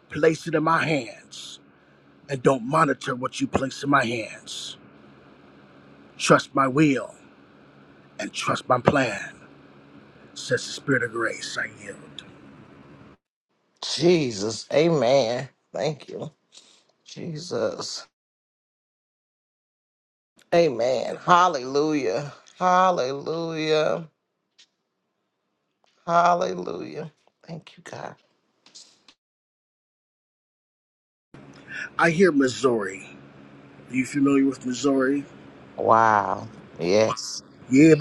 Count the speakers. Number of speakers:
two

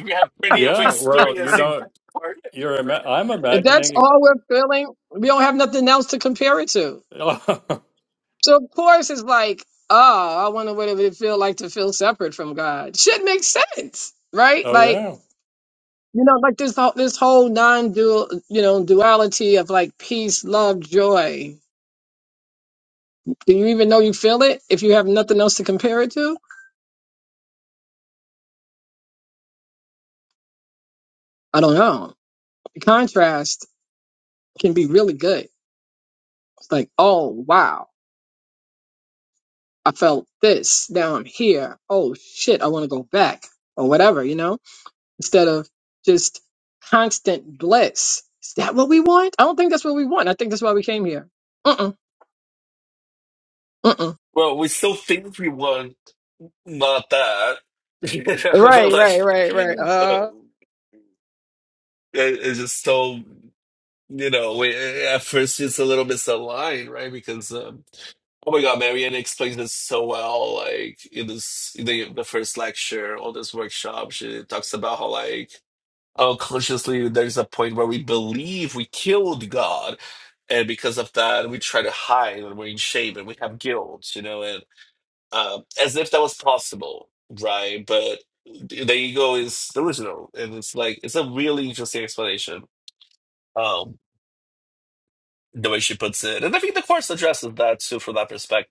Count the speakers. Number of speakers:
three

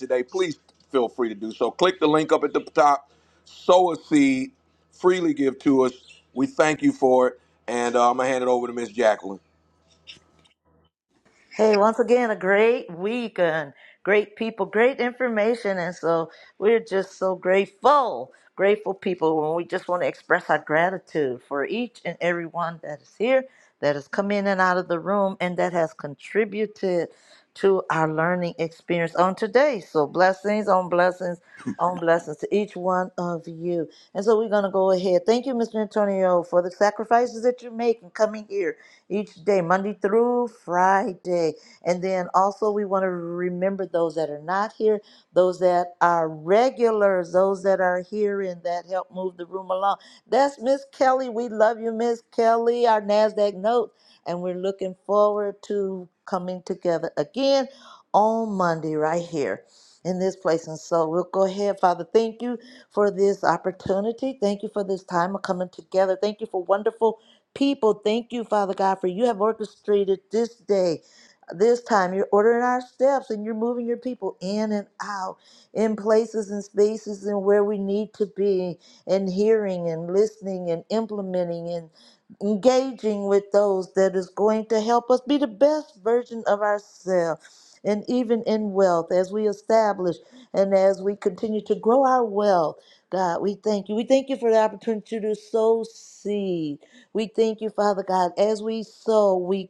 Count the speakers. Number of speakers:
two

